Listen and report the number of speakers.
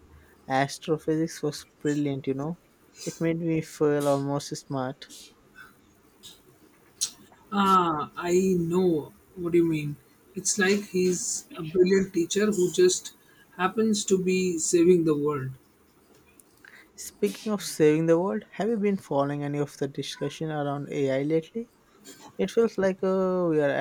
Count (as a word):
two